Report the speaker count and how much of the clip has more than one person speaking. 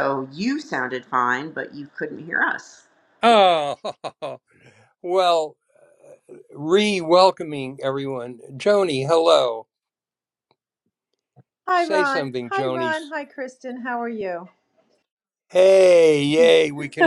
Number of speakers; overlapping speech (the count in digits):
3, about 6%